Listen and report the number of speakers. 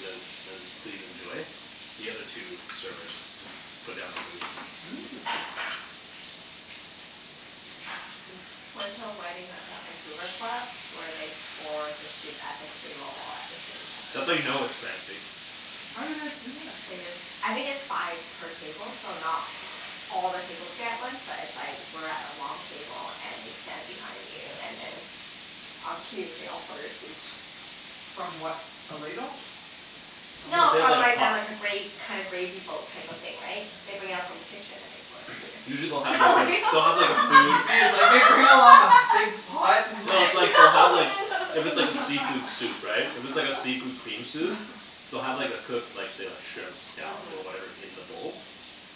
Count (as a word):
three